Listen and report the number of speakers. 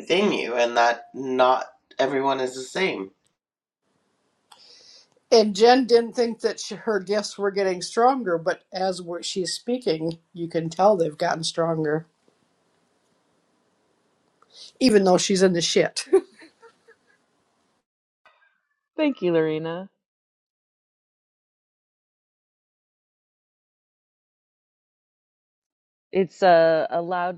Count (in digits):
3